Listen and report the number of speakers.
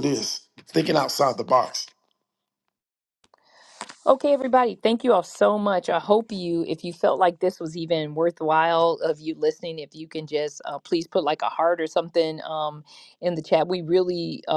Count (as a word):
two